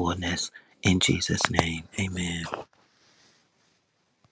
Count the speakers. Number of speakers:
1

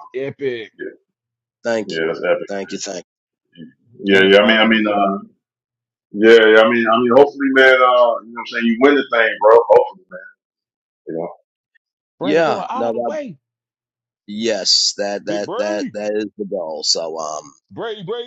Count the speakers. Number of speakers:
3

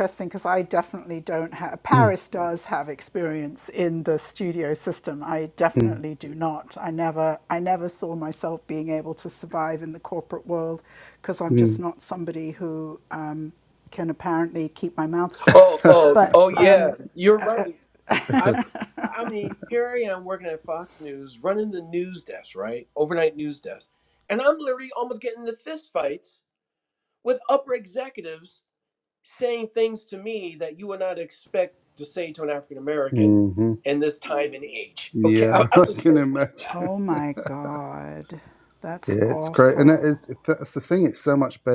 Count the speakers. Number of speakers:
3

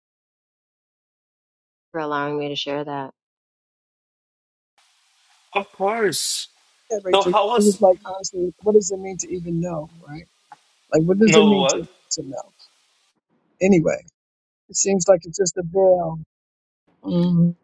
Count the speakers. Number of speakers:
3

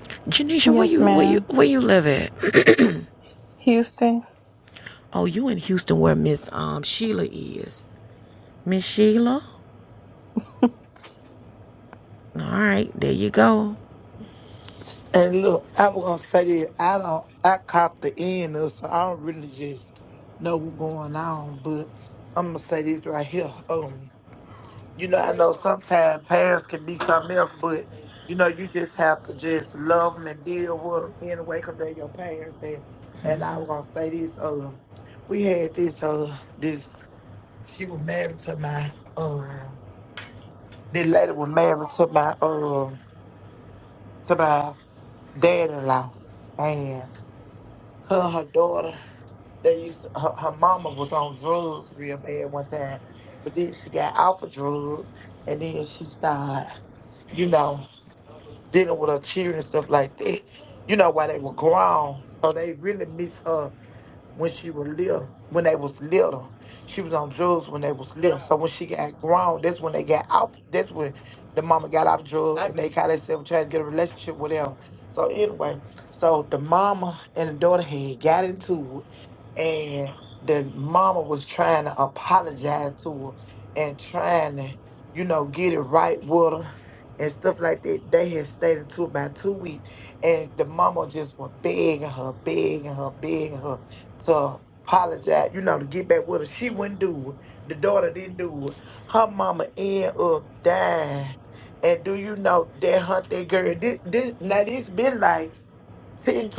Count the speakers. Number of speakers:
3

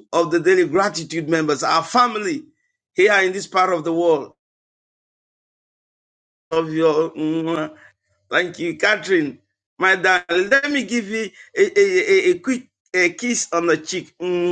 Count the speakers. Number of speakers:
1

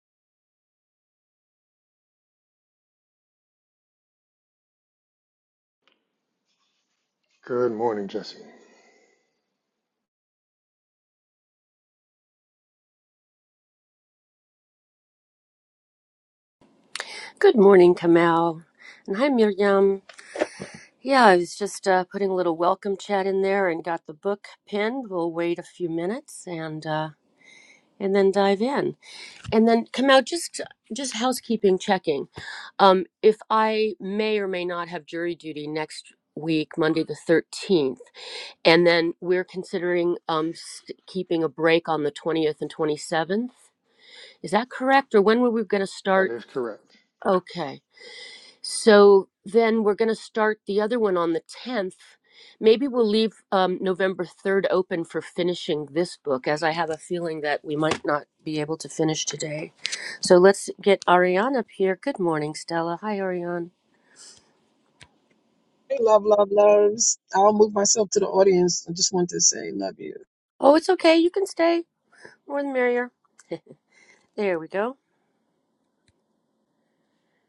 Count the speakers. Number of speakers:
3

